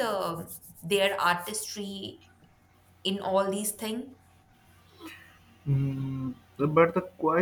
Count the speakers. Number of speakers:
two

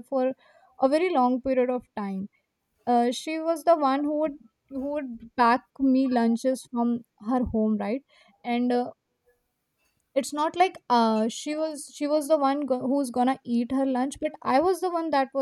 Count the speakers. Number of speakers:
one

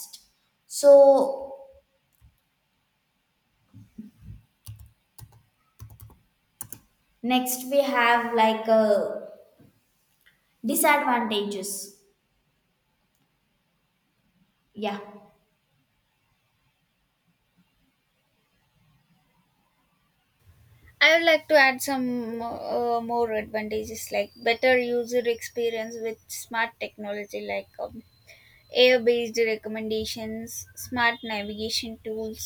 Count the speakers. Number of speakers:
two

